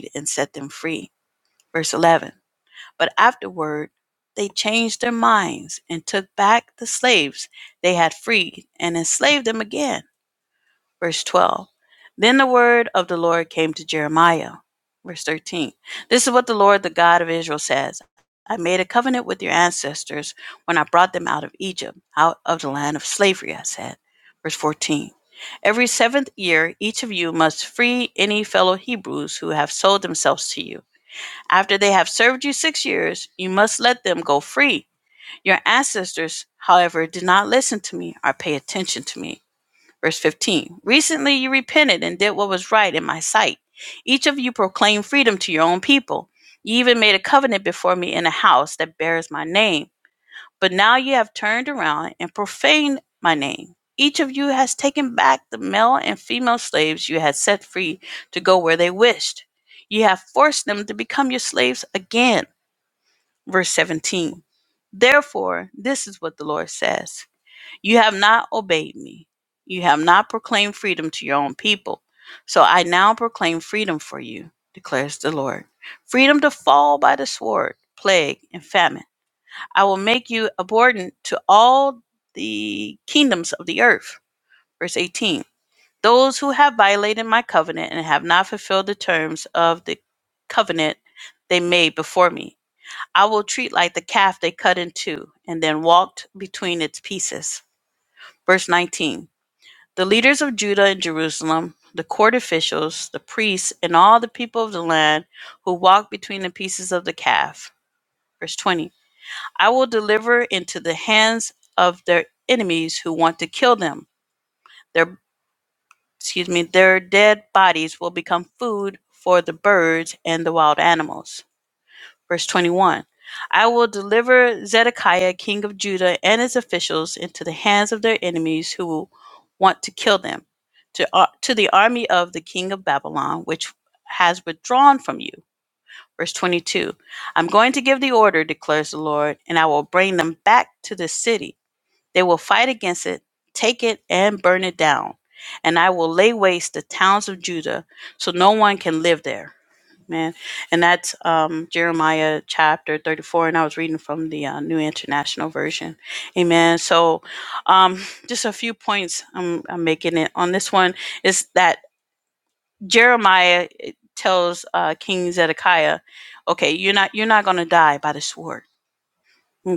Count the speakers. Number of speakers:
1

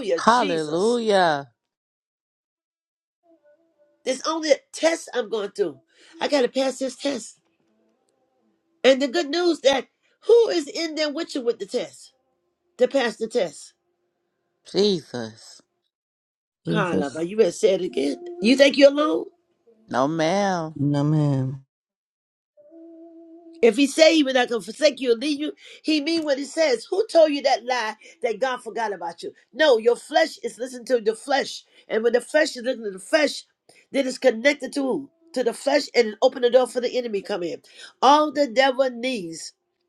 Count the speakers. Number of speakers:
3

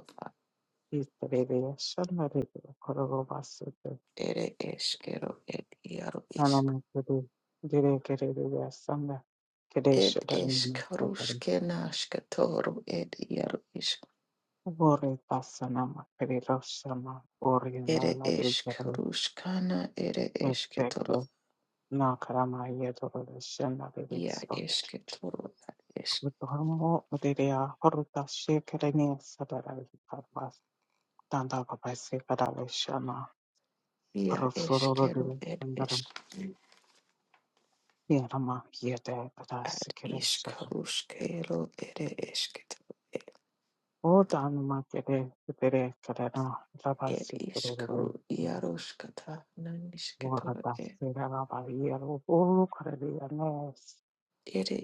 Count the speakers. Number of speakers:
2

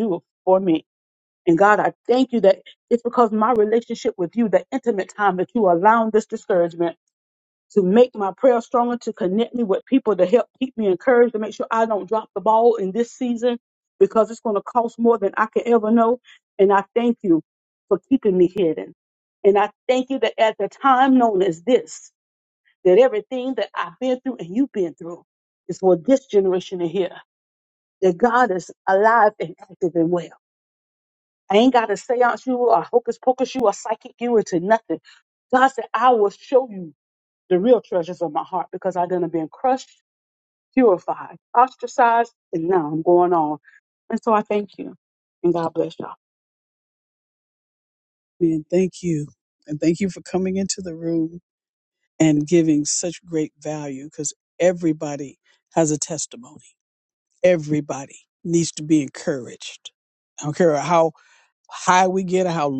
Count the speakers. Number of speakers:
2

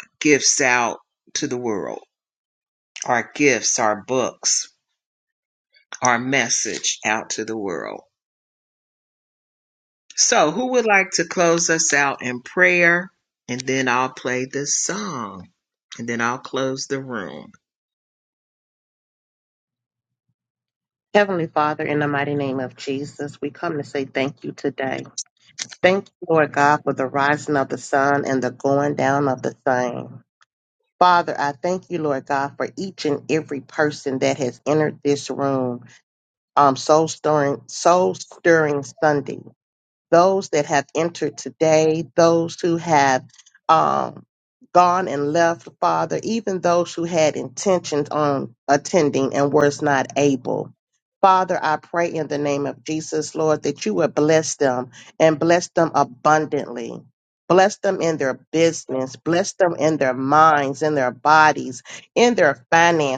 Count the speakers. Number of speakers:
2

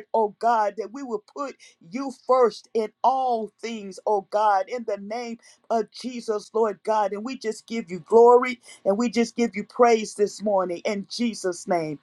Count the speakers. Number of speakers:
1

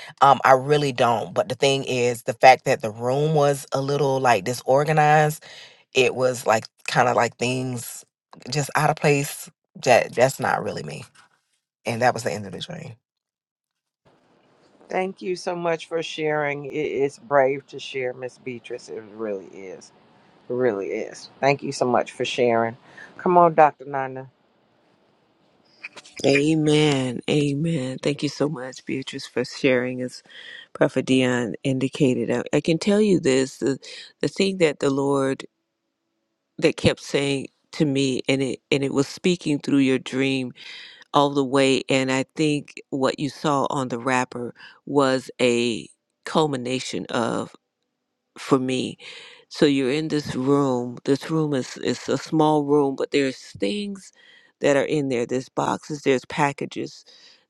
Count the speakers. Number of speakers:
3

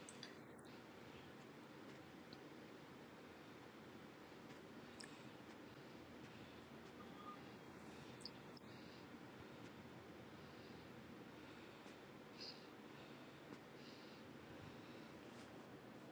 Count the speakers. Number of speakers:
0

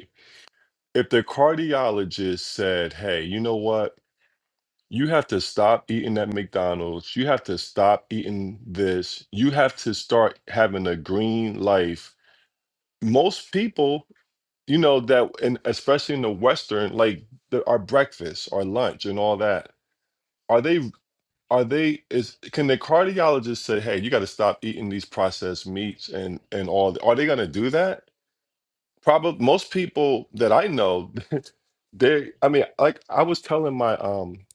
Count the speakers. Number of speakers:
1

